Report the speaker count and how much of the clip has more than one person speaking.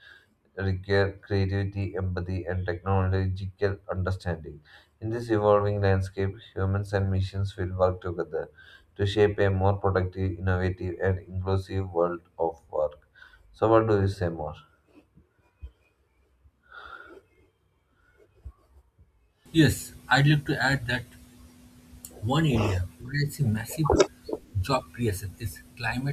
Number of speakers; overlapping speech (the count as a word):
two, no overlap